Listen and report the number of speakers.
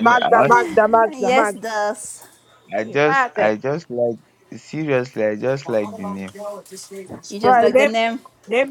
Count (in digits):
3